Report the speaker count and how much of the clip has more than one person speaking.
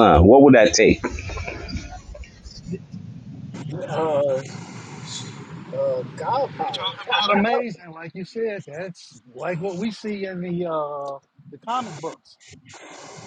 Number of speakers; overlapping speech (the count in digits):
3, about 3%